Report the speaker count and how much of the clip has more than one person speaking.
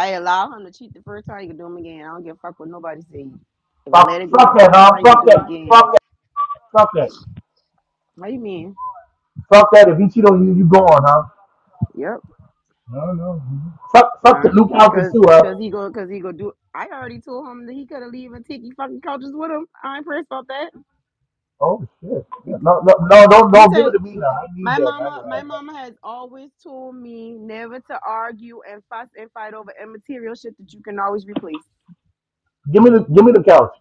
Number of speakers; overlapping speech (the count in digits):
2, about 13%